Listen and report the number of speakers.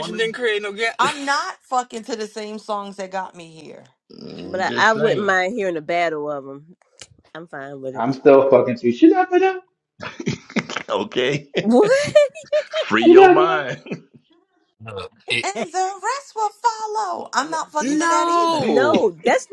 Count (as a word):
five